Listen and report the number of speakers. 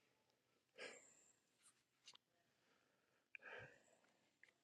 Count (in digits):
0